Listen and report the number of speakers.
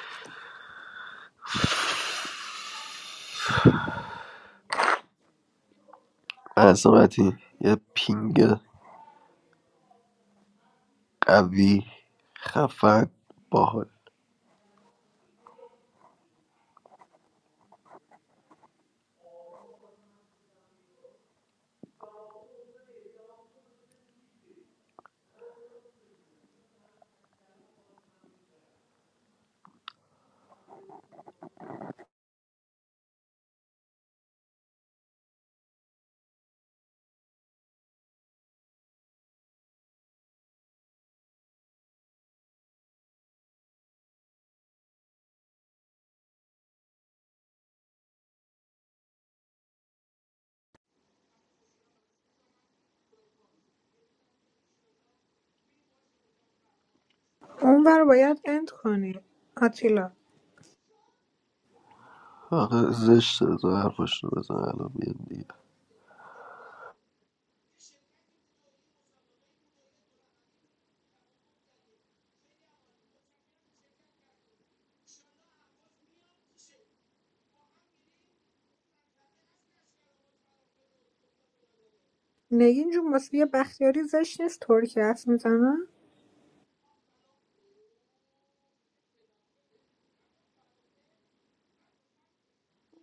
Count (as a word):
two